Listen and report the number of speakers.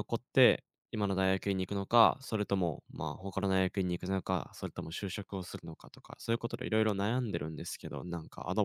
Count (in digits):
1